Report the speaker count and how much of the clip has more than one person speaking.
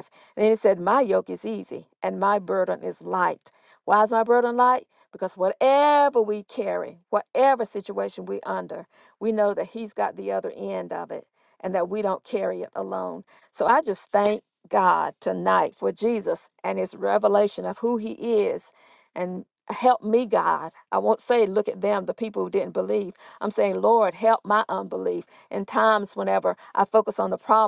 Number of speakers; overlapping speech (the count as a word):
one, no overlap